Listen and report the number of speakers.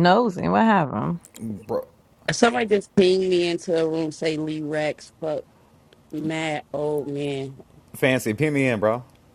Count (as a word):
three